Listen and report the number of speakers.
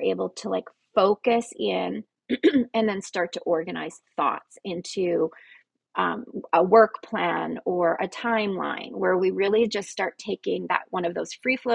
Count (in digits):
1